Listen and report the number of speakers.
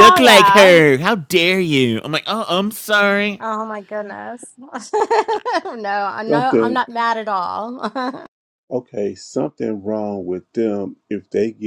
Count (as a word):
three